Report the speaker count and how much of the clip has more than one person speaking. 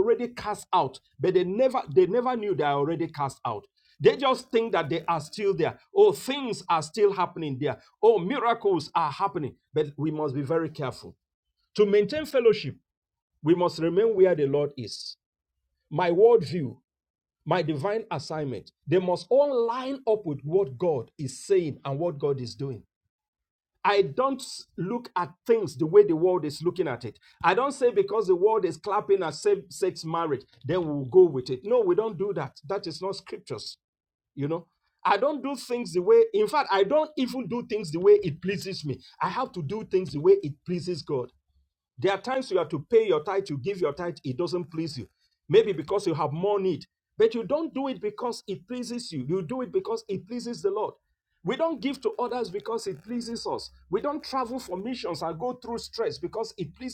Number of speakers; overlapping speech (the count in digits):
1, no overlap